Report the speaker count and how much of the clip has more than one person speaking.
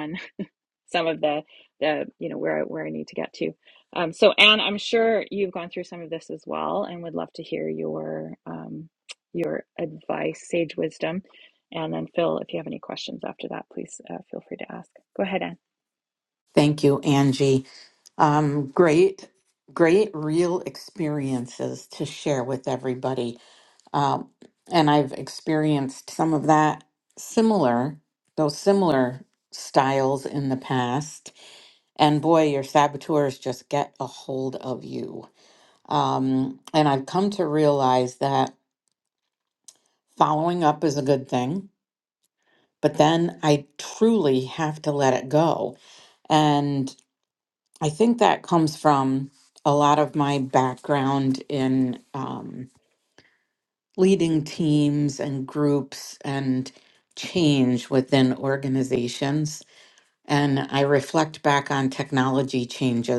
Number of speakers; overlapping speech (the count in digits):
2, no overlap